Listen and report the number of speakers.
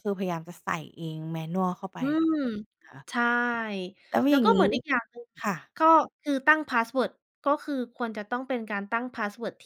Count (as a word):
two